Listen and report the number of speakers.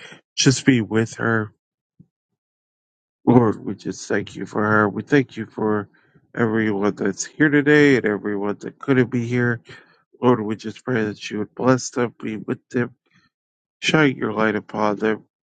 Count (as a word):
one